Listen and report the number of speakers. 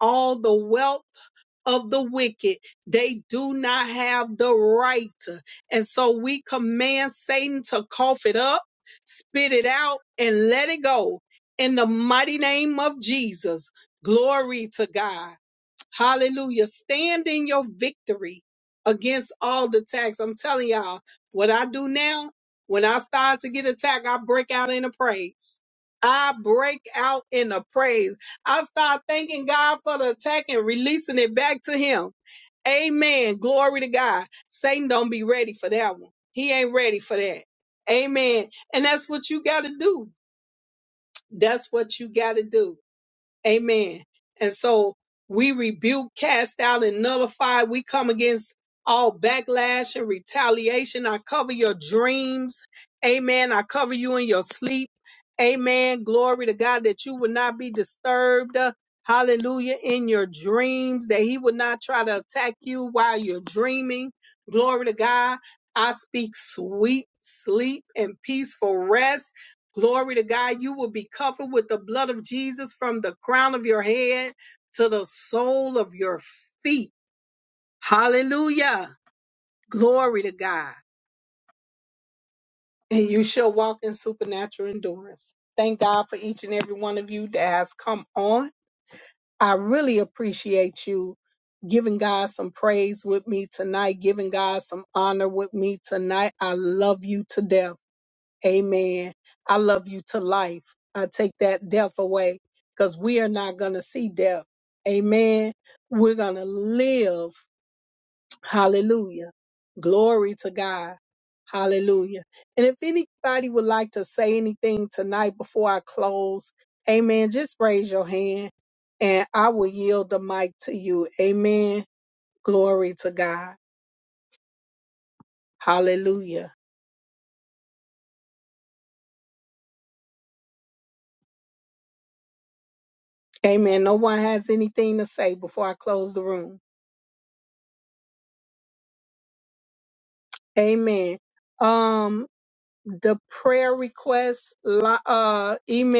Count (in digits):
1